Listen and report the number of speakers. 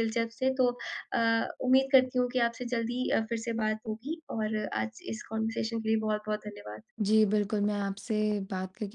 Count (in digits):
2